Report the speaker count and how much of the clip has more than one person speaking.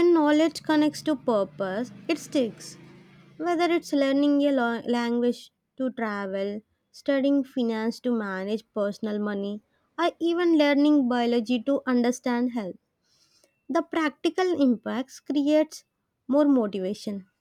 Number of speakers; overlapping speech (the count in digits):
1, no overlap